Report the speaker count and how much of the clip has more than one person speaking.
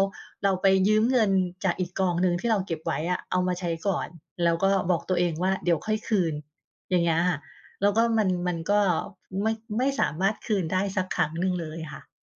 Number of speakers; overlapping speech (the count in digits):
1, no overlap